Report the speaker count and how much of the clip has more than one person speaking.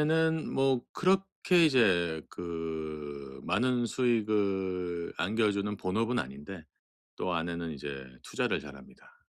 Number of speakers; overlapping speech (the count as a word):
one, no overlap